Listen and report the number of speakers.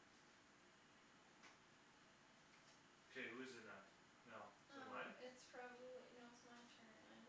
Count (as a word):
two